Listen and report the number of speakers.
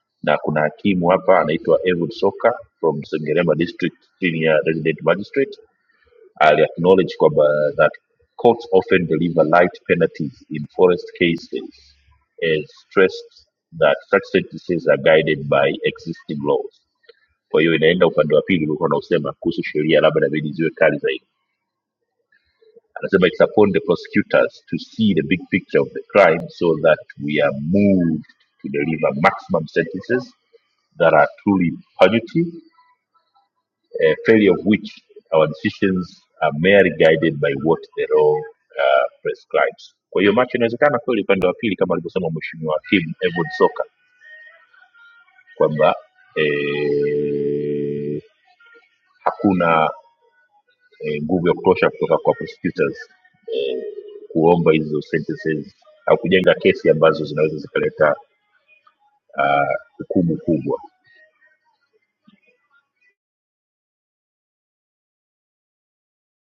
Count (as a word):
one